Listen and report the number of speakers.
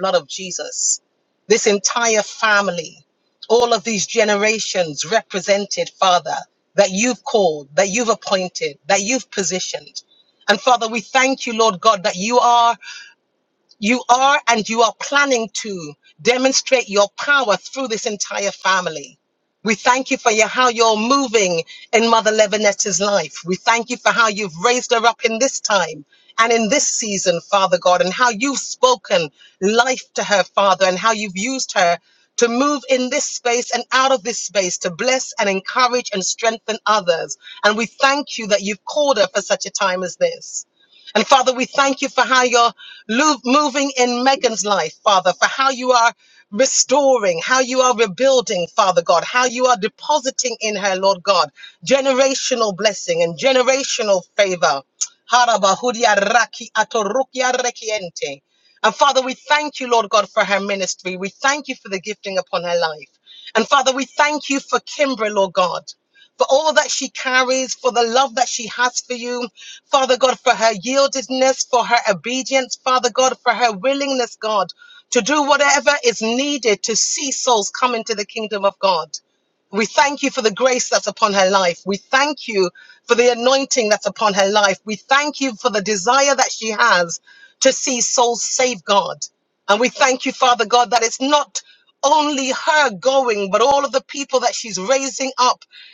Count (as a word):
one